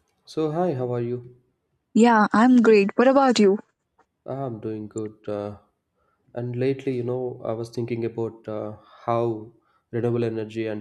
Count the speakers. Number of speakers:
2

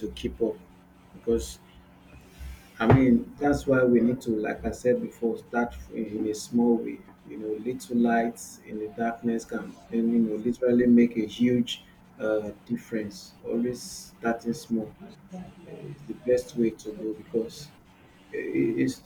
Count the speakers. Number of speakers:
1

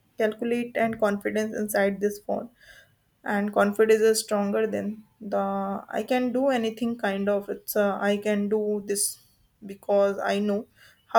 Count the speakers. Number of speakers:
1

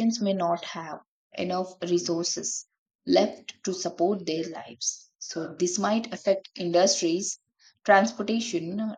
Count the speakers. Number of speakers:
1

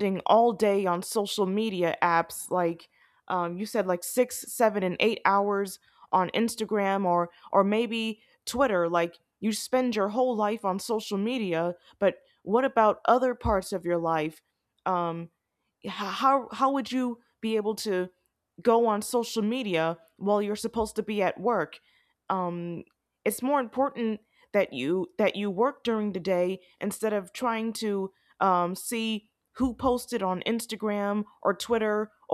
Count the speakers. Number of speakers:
1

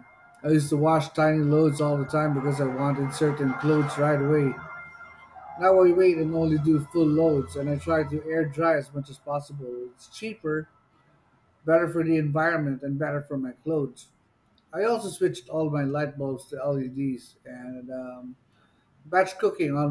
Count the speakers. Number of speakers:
1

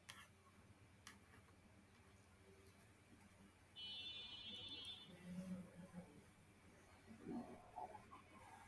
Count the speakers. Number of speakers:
0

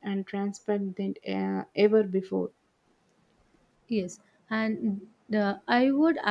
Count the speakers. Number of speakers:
2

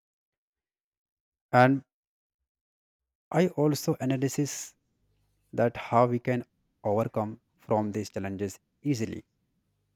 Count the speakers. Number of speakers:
1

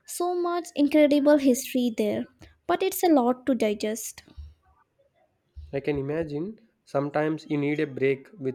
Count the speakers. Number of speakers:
2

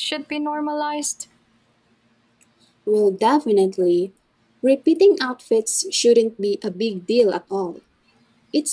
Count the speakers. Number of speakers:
2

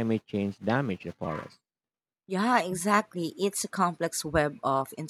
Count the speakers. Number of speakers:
2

